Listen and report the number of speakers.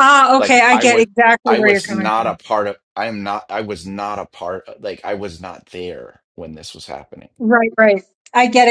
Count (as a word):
two